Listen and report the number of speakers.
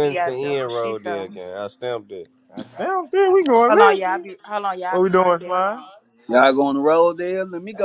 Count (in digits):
4